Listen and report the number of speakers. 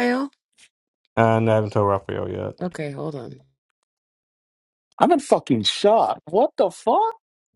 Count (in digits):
3